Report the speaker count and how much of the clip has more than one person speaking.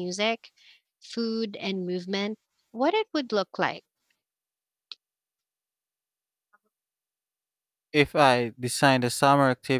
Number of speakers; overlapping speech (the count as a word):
two, no overlap